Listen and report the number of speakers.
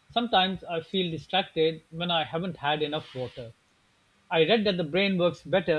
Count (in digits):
1